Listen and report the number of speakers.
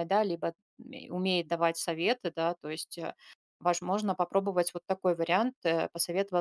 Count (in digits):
1